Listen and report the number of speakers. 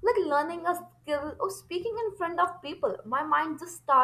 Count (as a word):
one